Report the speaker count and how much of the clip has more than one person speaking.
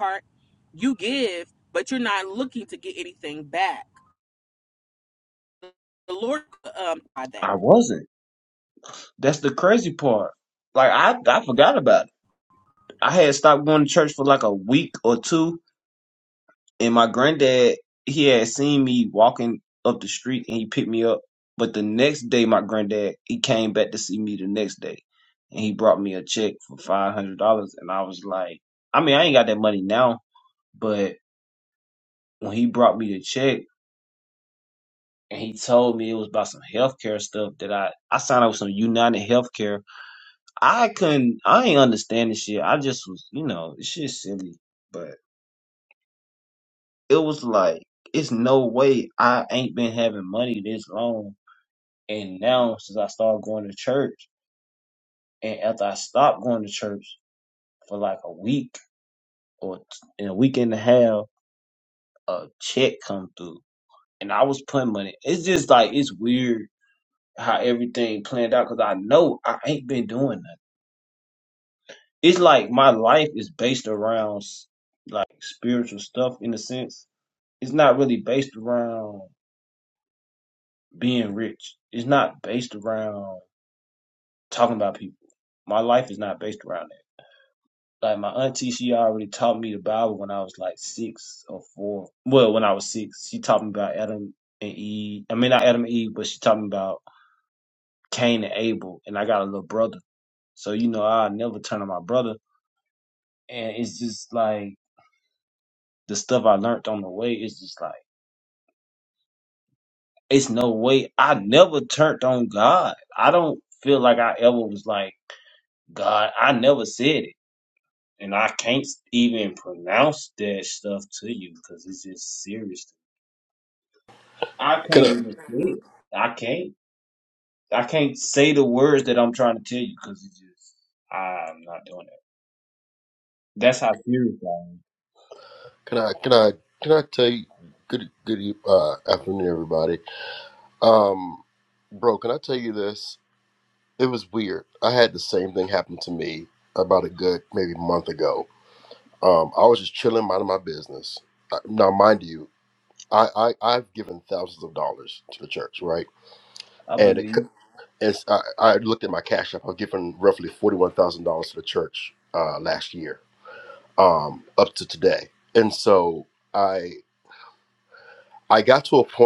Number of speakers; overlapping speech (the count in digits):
3, under 1%